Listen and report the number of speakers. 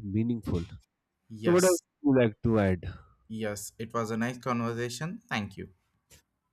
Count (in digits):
2